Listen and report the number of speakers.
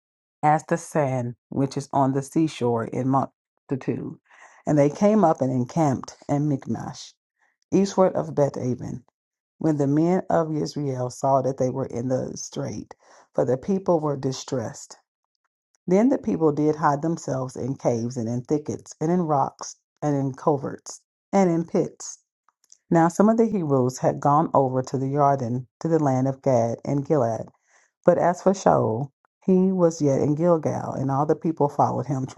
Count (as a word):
one